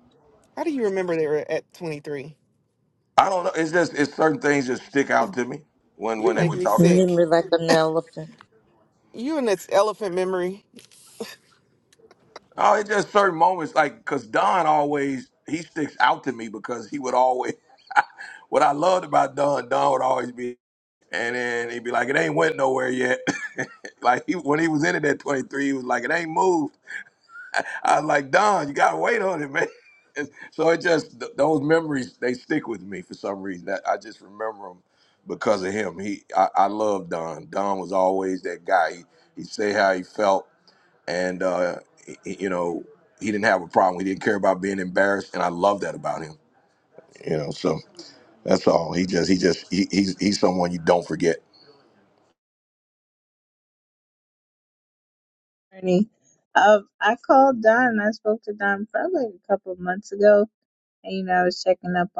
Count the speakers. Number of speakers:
4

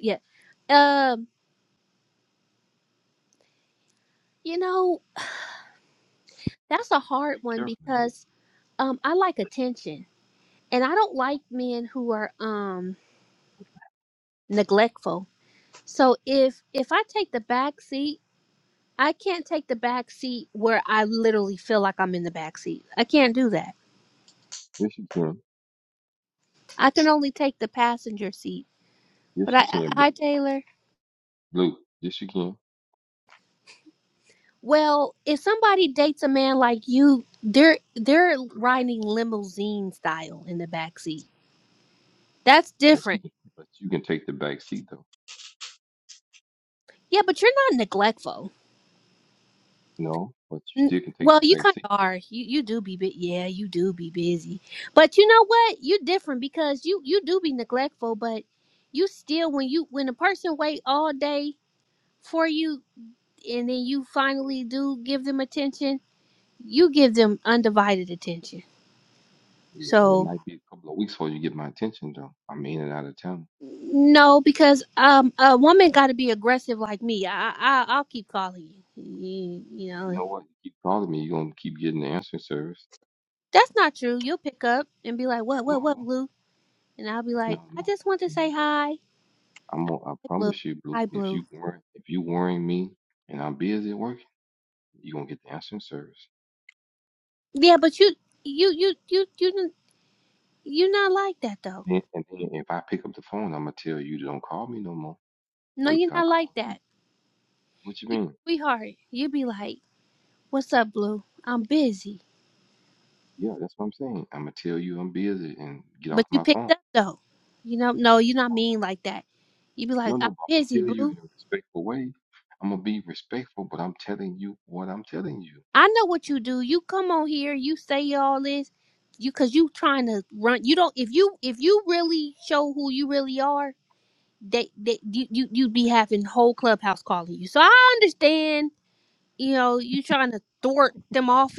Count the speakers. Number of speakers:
2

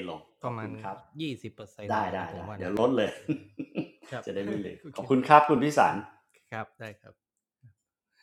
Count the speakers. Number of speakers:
2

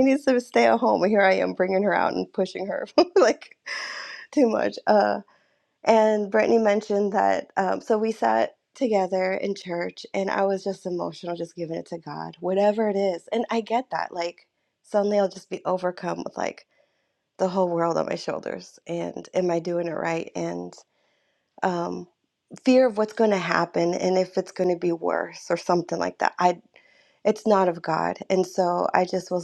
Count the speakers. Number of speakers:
1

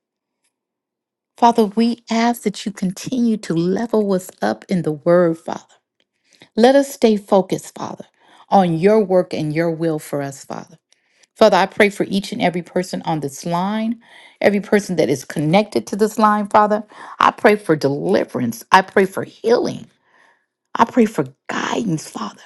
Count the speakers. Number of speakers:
1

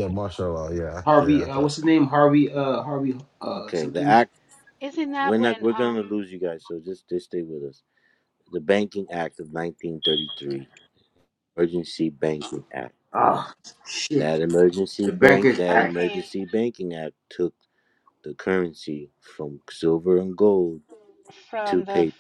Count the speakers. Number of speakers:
4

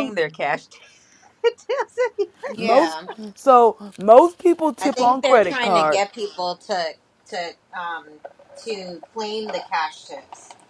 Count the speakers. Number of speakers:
3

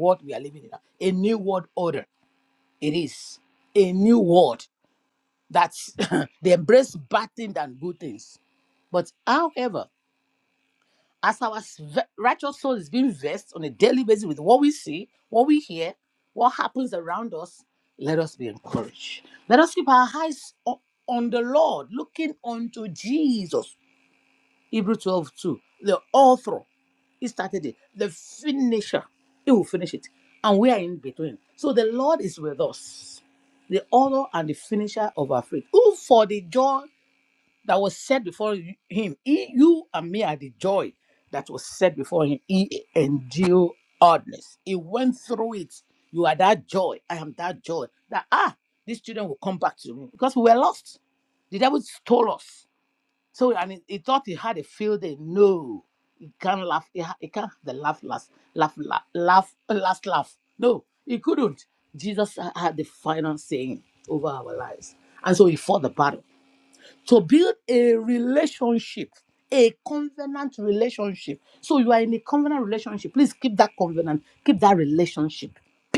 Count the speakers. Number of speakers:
1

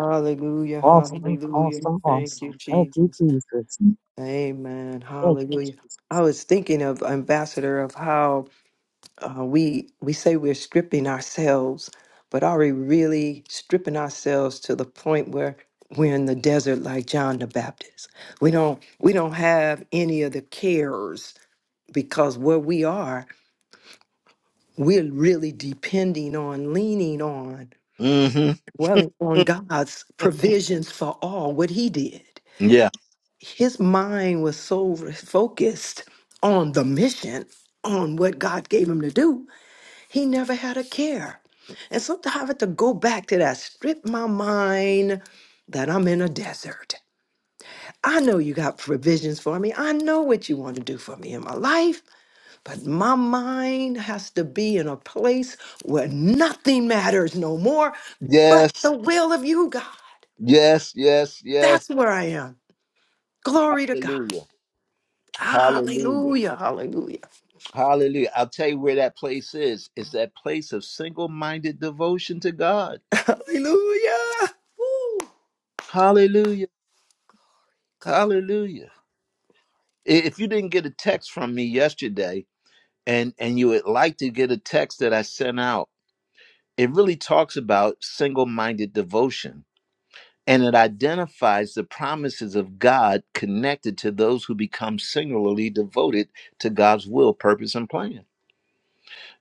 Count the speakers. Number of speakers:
3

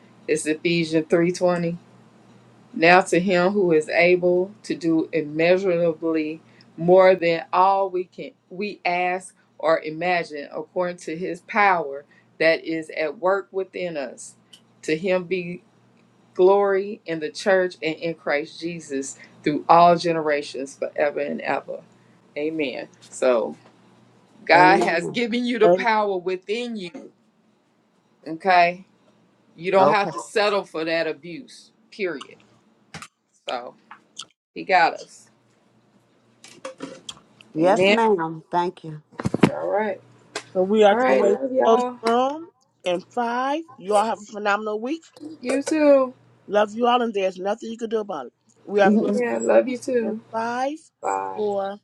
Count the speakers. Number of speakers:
3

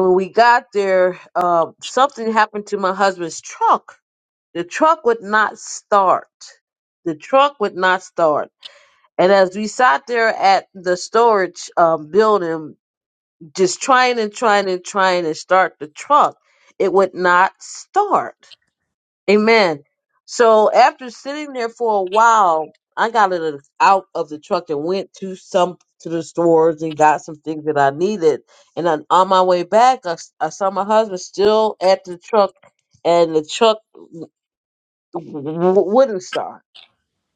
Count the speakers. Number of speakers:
1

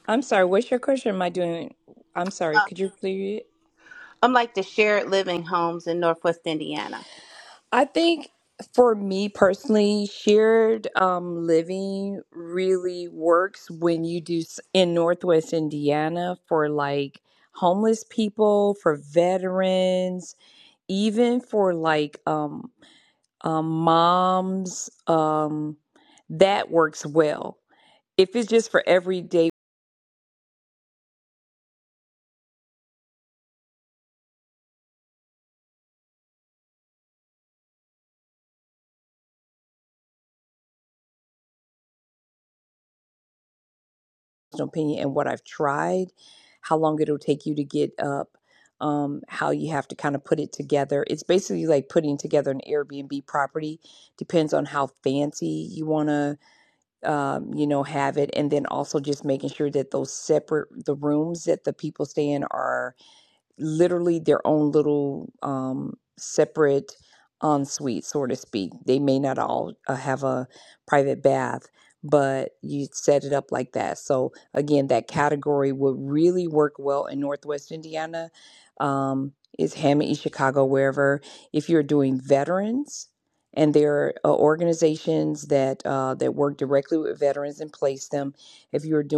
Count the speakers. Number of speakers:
2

